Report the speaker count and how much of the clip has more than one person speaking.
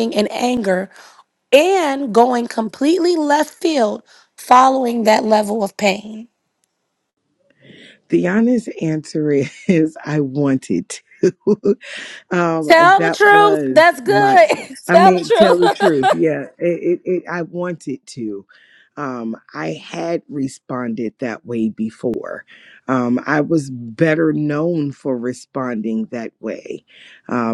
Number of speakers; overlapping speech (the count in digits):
2, about 9%